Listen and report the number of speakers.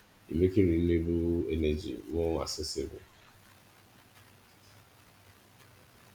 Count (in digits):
1